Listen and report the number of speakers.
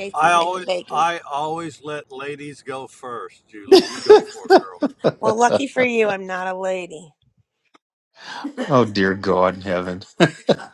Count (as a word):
three